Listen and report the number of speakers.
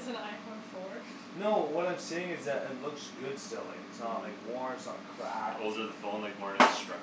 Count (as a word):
three